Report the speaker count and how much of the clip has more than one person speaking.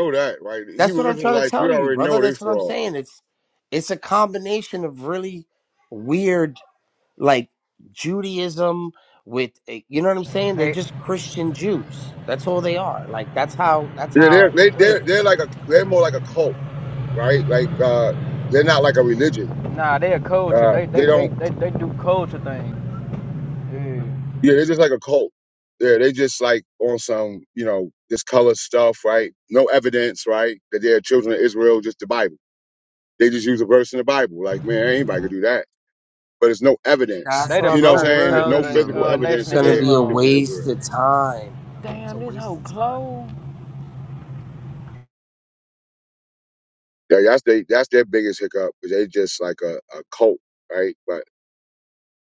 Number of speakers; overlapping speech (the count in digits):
3, about 15%